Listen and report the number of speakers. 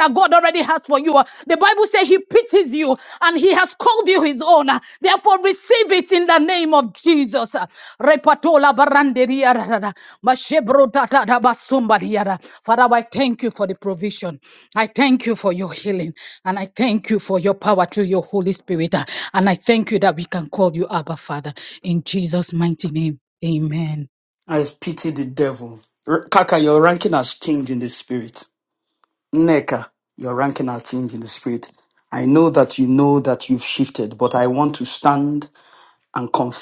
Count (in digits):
2